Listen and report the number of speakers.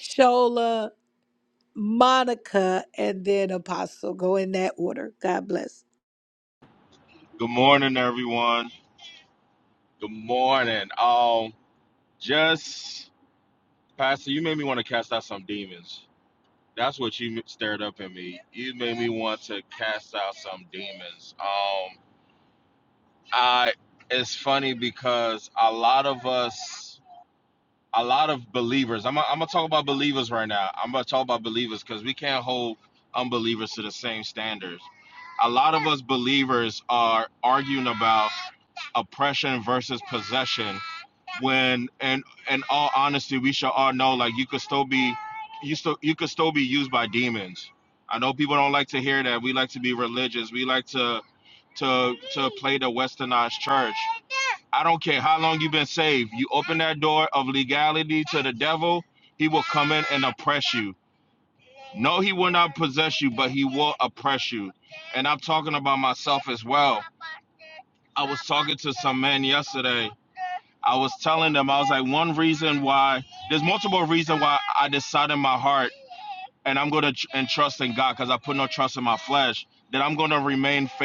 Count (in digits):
2